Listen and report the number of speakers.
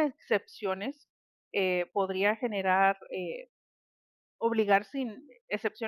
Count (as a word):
one